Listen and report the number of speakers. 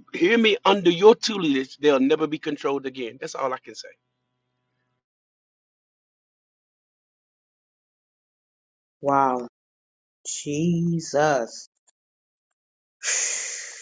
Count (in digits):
2